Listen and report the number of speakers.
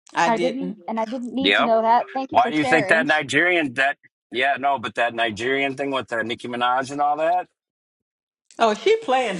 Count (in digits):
3